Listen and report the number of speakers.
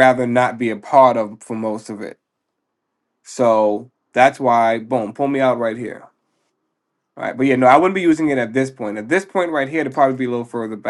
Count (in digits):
1